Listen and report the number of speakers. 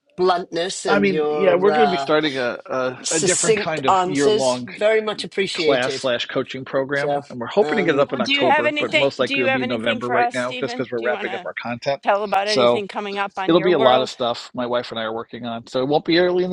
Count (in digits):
3